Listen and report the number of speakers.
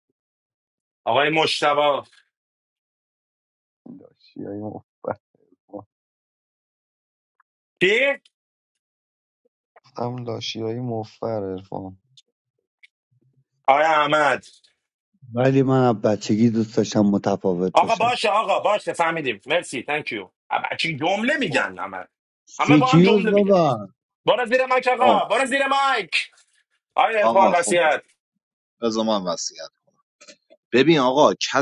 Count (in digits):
4